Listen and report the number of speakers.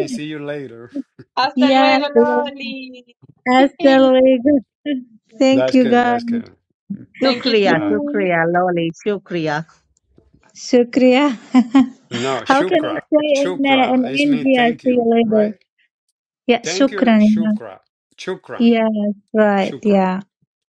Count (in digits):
4